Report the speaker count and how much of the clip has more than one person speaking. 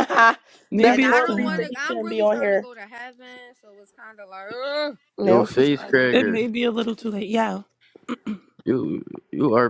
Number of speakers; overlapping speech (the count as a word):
four, about 28%